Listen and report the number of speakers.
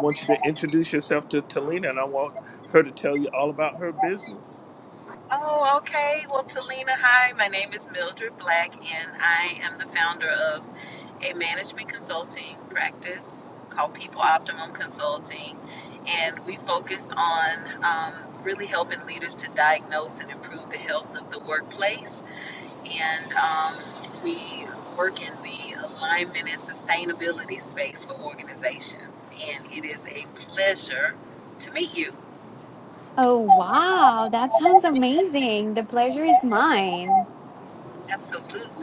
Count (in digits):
3